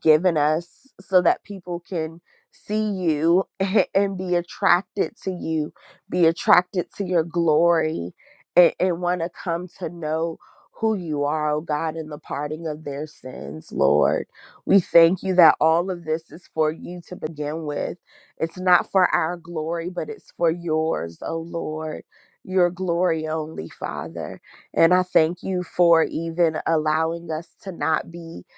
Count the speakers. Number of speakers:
1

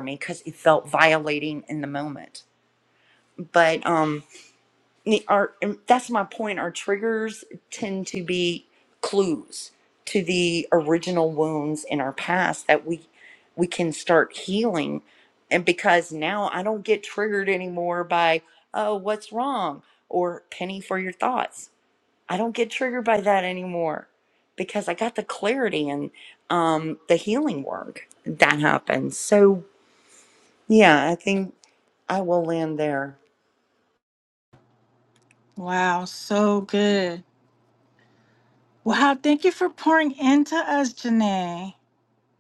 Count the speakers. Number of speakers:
2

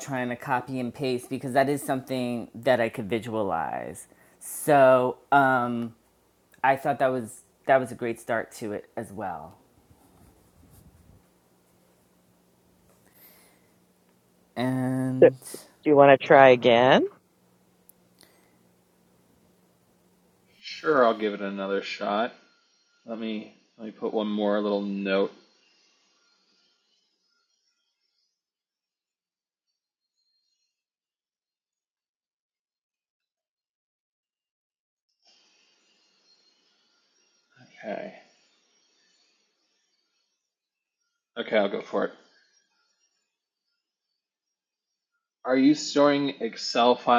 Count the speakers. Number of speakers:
3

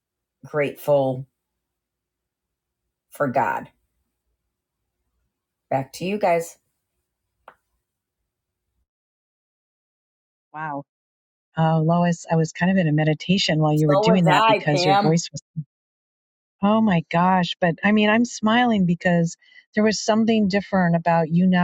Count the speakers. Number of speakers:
2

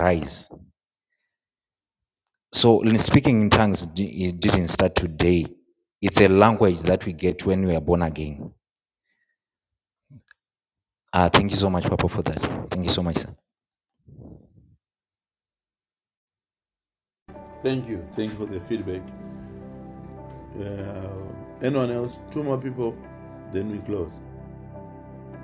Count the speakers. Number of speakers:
2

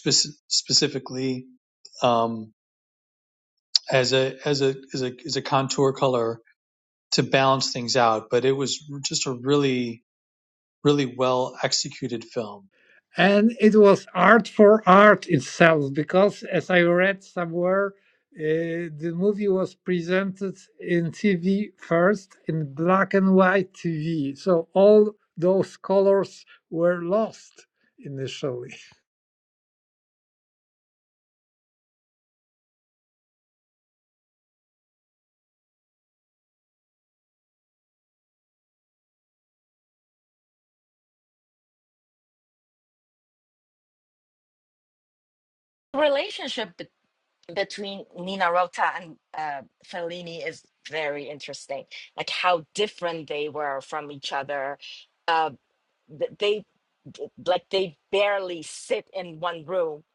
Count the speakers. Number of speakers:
3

